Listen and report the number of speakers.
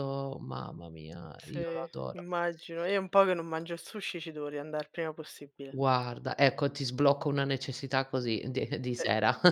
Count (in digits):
2